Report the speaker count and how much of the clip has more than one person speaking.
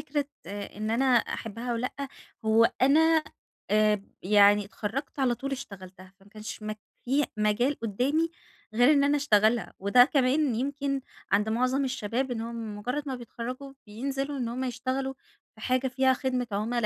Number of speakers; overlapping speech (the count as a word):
one, no overlap